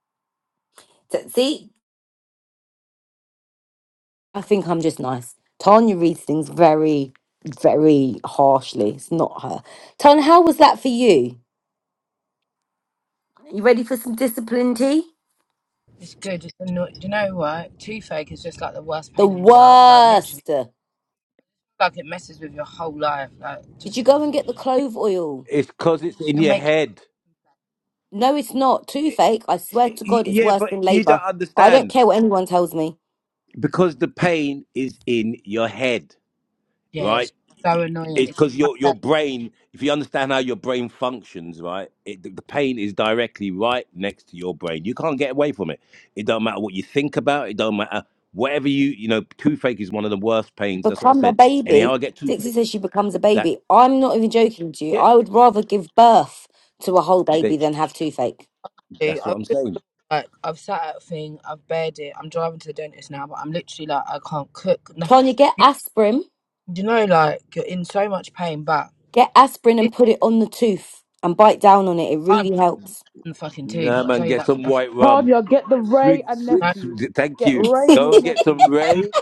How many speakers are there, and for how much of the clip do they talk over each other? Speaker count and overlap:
4, about 13%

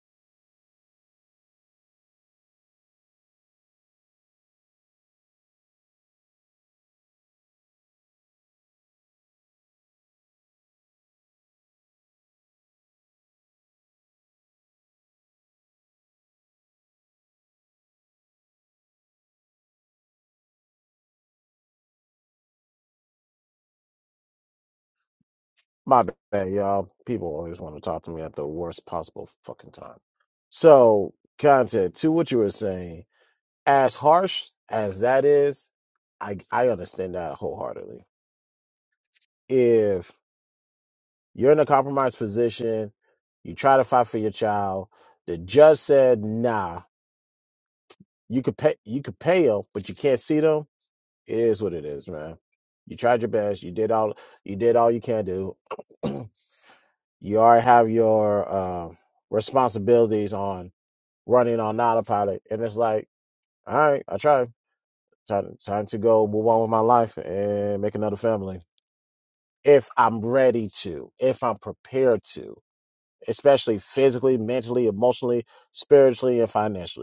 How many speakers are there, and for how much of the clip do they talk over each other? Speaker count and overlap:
1, no overlap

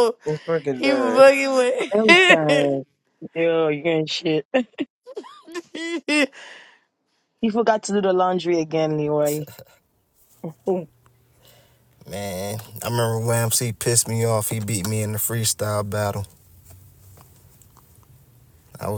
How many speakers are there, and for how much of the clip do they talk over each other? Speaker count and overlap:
4, about 6%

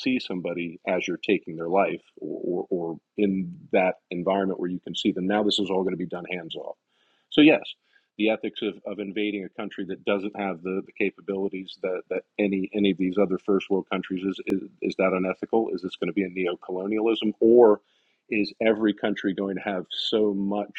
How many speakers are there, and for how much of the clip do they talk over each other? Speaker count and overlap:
1, no overlap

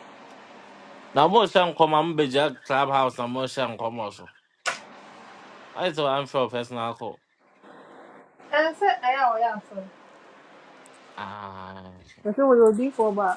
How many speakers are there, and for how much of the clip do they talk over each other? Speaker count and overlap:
2, no overlap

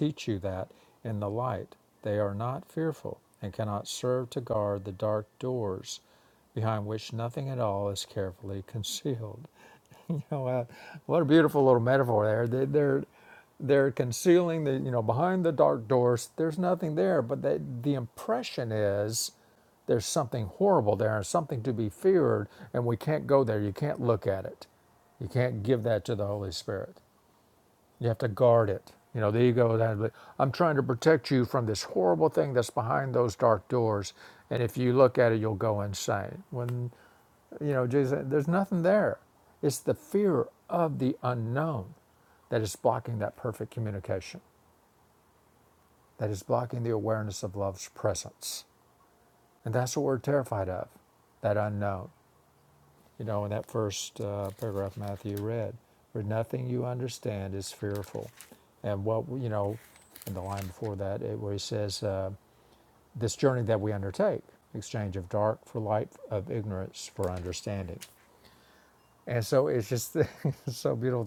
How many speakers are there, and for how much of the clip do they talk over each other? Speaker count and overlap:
1, no overlap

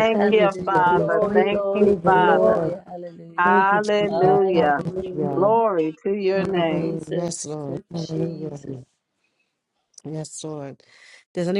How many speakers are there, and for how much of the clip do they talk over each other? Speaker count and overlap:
3, about 55%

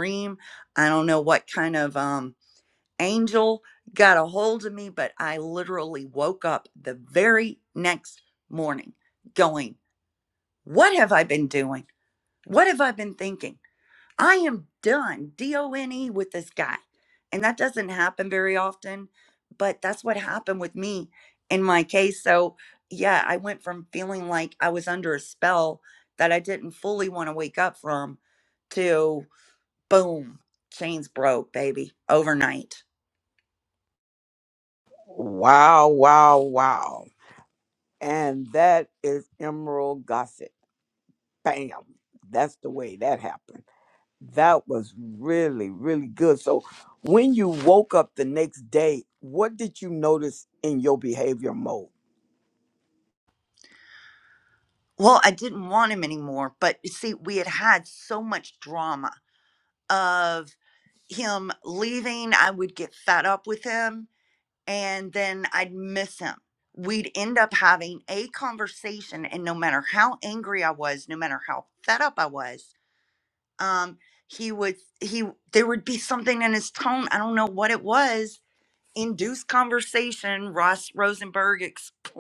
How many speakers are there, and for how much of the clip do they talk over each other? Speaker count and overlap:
2, no overlap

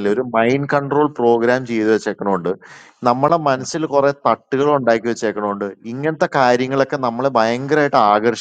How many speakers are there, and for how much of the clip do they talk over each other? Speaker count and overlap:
1, no overlap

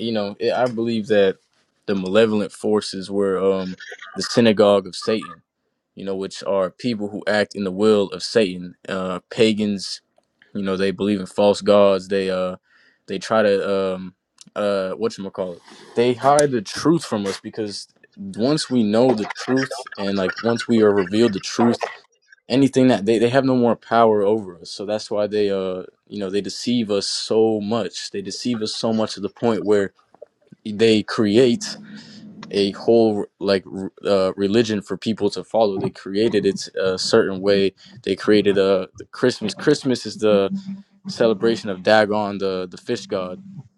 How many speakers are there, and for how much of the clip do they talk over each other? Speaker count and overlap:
1, no overlap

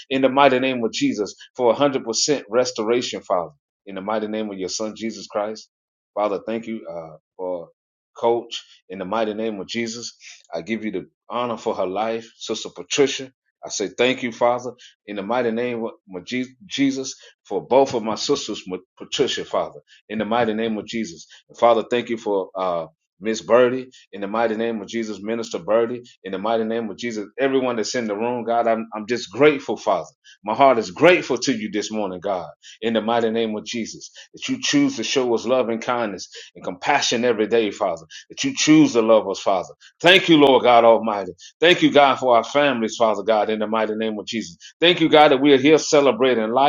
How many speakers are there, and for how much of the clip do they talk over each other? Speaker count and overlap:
1, no overlap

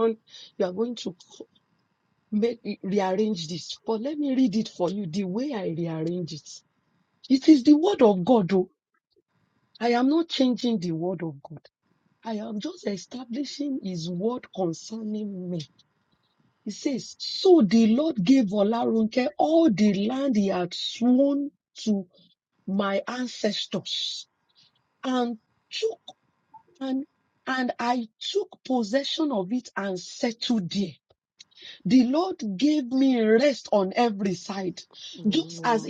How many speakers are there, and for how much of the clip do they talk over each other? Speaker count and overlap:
1, no overlap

